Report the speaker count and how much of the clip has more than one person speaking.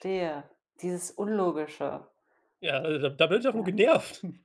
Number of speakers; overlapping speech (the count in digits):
2, about 4%